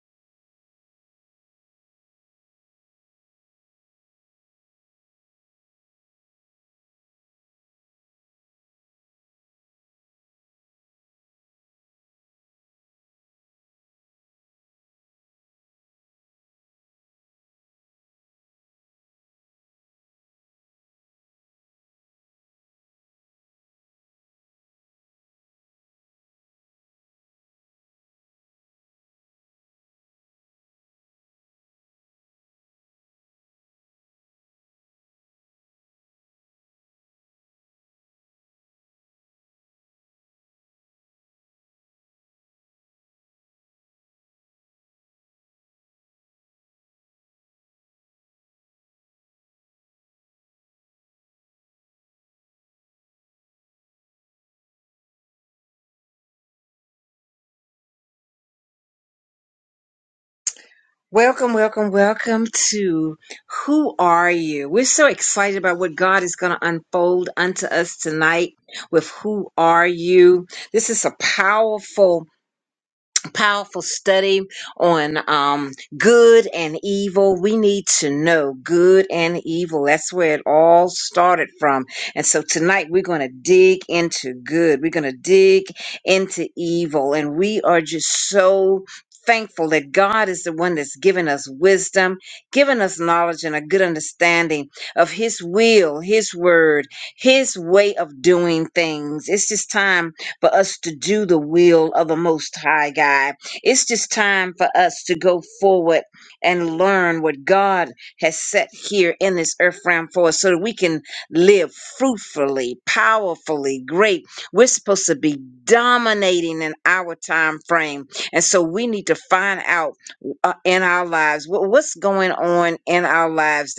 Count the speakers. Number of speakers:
one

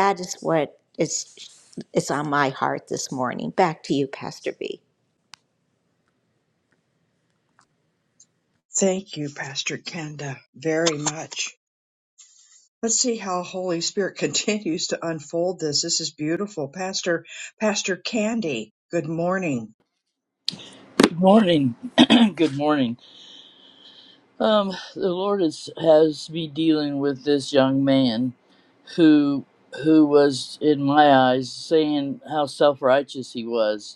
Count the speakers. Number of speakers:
three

